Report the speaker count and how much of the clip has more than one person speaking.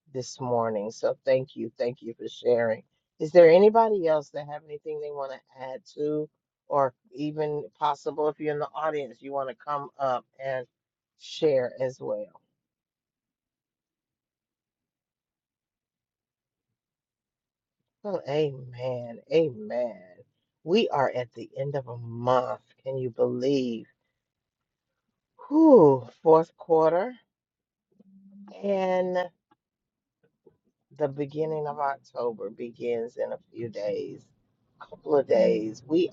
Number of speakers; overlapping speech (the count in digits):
1, no overlap